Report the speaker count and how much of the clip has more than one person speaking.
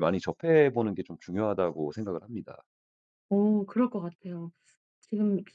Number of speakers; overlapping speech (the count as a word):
two, no overlap